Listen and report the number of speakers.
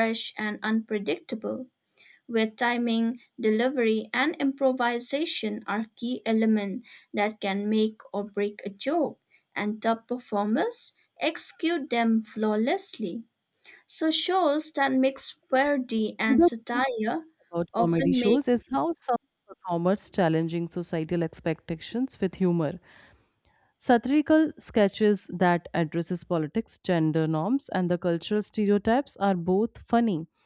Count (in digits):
2